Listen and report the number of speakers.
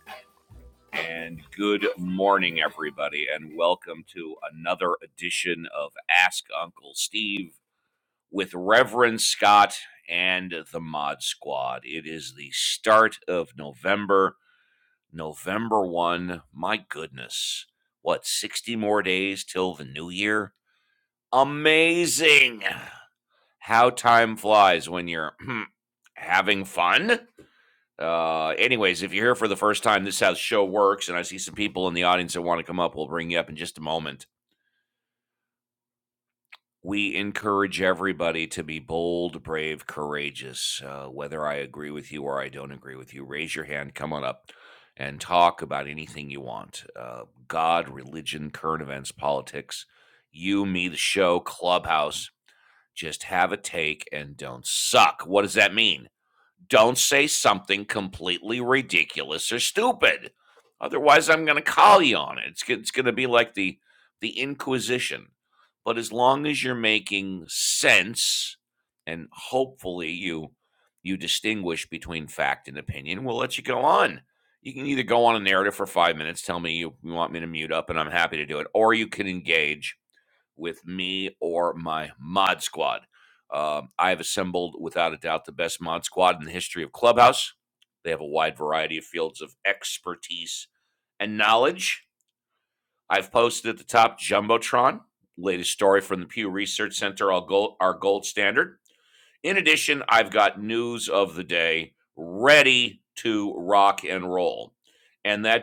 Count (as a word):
one